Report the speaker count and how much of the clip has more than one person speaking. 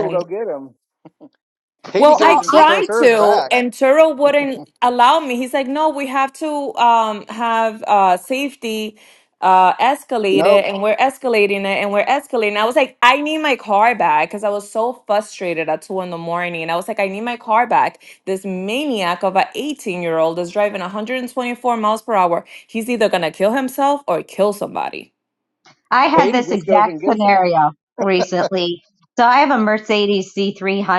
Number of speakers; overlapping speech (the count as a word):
three, about 10%